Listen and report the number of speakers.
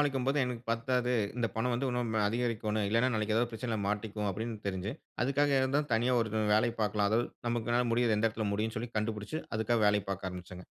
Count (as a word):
one